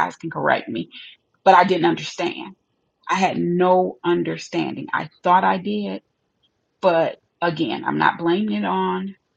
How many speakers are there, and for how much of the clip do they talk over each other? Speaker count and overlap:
one, no overlap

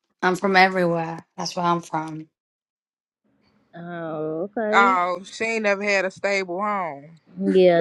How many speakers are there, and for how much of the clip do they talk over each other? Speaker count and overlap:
three, about 3%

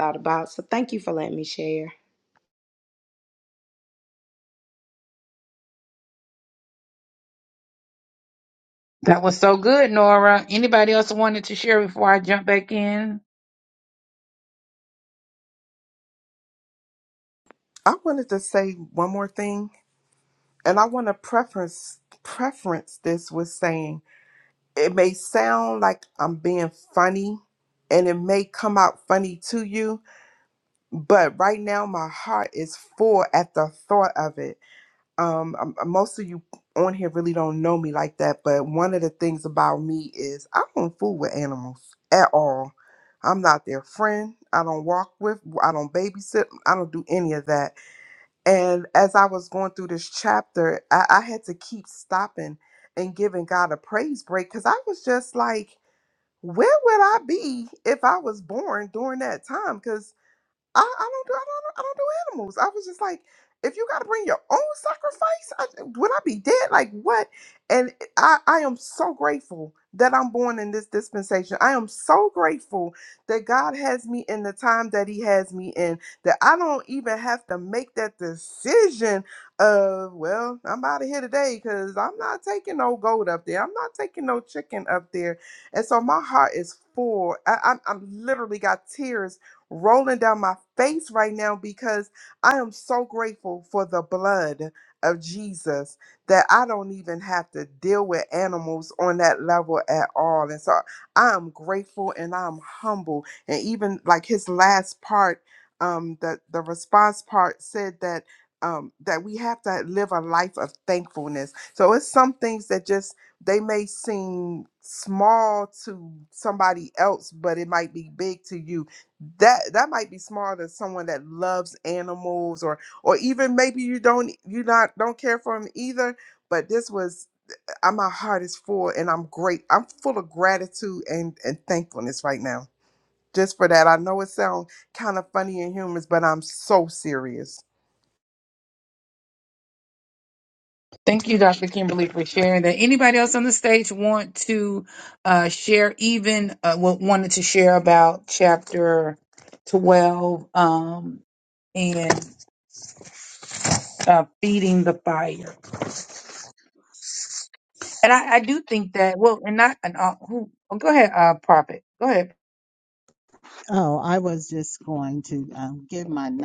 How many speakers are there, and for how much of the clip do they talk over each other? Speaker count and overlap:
four, no overlap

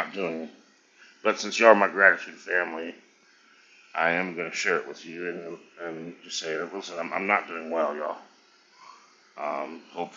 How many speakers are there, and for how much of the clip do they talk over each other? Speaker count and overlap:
one, no overlap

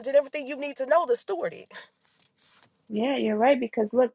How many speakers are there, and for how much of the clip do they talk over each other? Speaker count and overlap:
two, no overlap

